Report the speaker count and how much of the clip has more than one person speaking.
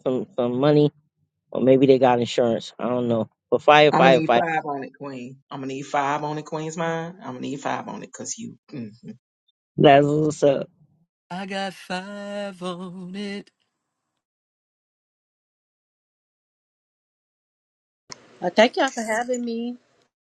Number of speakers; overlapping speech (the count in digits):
4, about 3%